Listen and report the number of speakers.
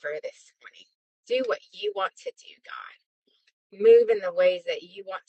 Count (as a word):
one